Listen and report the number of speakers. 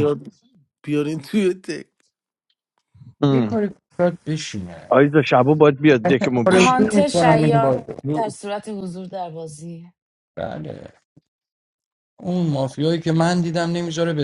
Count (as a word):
four